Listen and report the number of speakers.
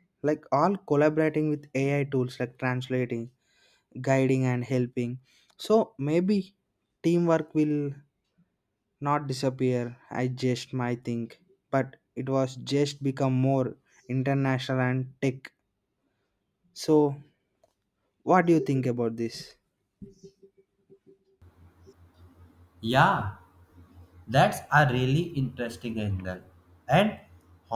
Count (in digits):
2